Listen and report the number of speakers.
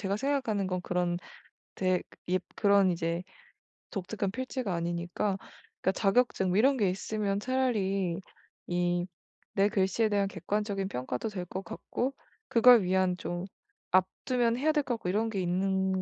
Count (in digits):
1